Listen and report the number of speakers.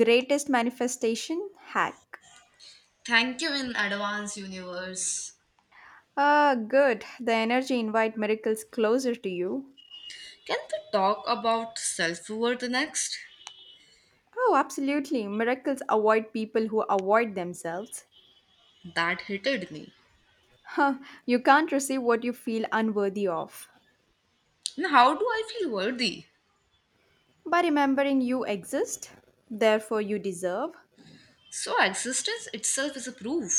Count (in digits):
2